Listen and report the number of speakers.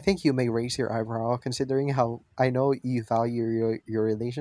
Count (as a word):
one